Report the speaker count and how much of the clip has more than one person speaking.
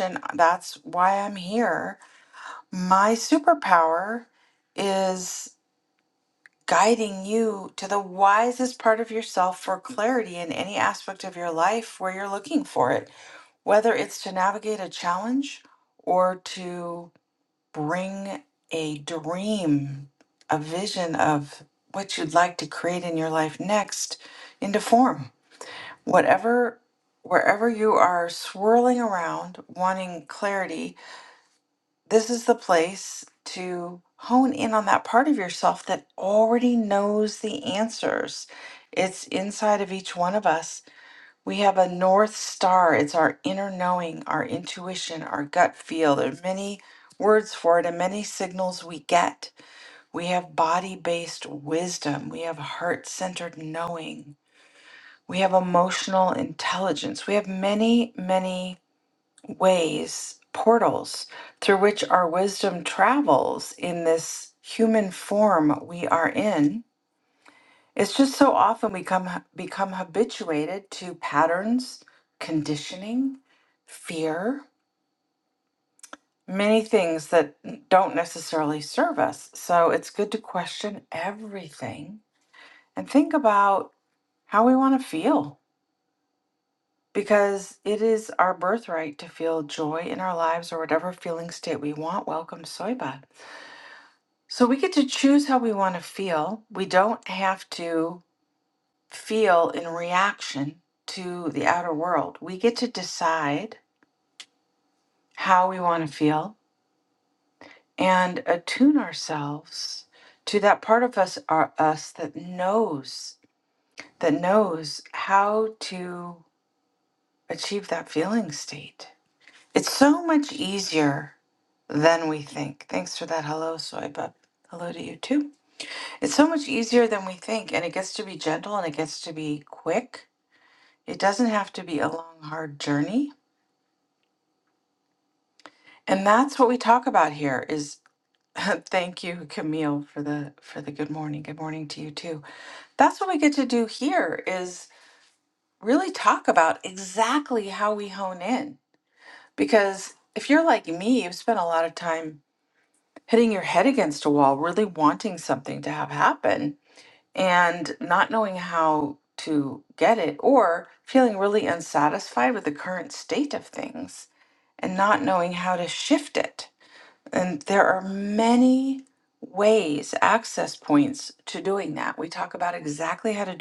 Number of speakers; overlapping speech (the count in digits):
1, no overlap